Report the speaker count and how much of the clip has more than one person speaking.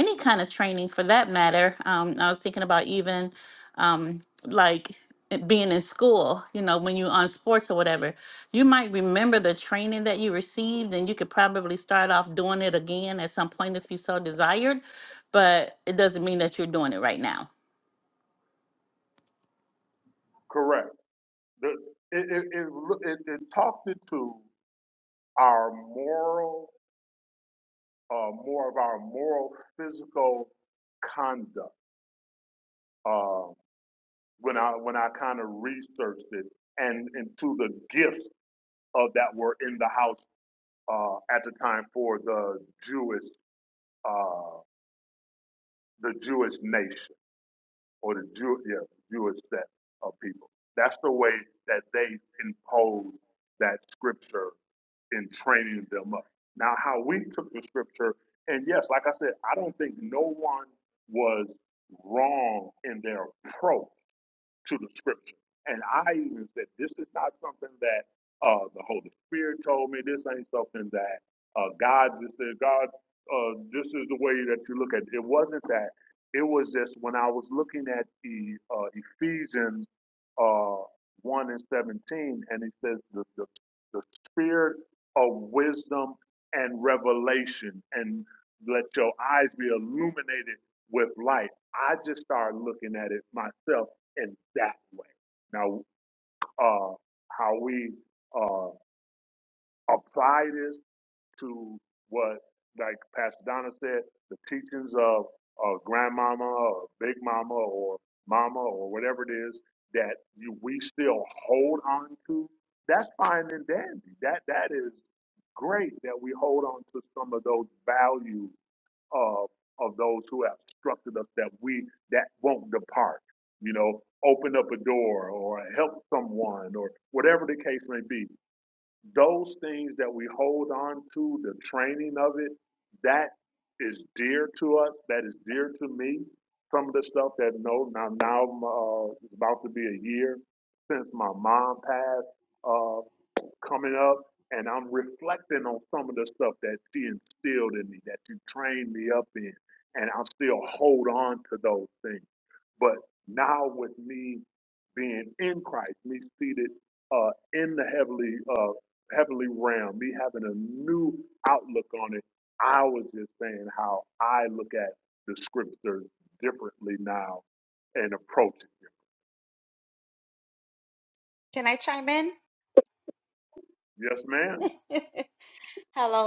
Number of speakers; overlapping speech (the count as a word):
three, no overlap